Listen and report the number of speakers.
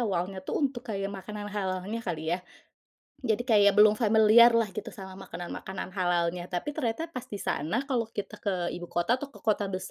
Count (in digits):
1